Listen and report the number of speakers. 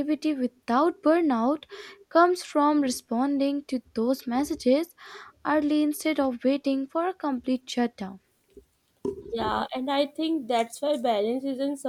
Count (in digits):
2